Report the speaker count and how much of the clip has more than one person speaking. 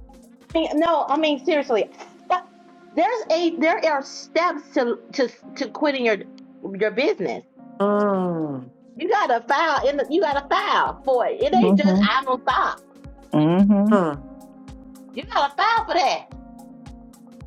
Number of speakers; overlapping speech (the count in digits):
3, about 4%